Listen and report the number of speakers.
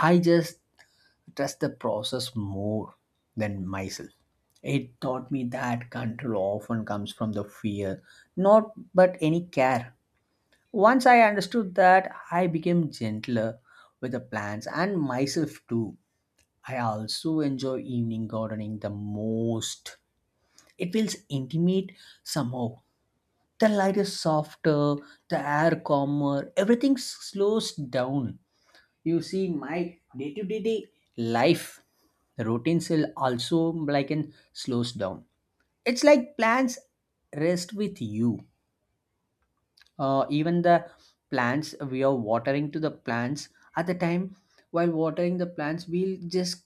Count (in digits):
1